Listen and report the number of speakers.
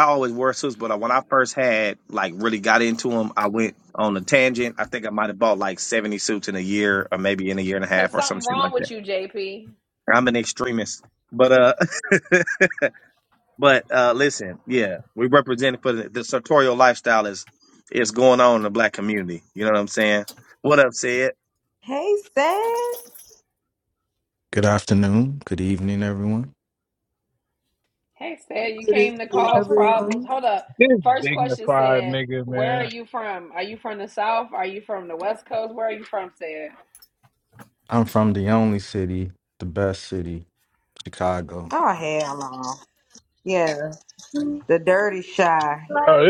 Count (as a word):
five